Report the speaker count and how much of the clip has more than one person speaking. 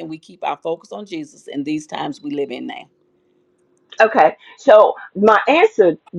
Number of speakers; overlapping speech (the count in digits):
2, no overlap